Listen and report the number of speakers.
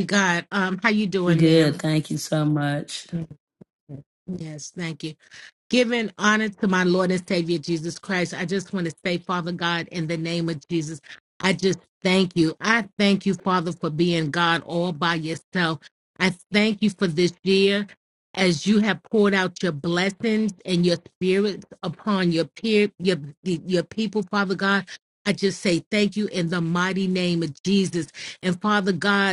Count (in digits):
2